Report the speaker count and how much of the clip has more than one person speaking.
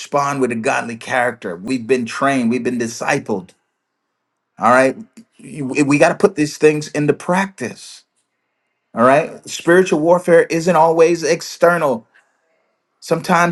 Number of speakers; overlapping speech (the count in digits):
1, no overlap